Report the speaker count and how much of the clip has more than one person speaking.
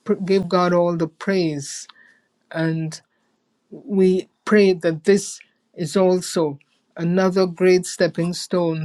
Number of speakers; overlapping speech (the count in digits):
1, no overlap